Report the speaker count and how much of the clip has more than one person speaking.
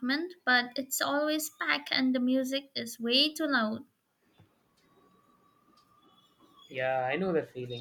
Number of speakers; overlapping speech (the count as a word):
two, no overlap